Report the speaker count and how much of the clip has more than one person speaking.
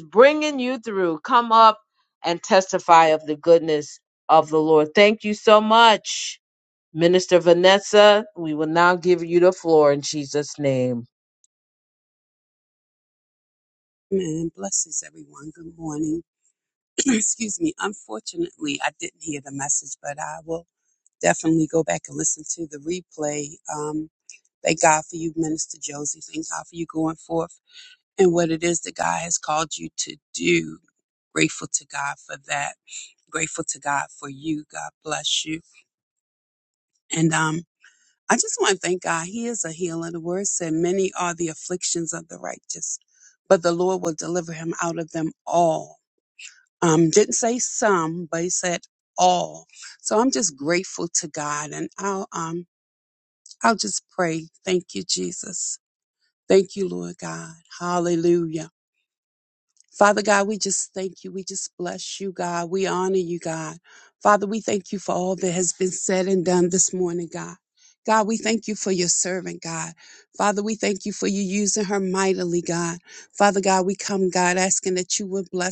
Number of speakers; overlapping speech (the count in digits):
2, no overlap